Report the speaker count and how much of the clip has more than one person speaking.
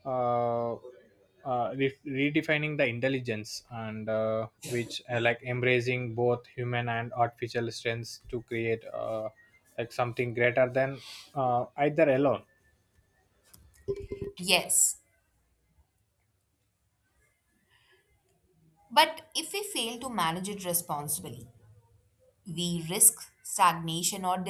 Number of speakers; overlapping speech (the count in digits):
2, no overlap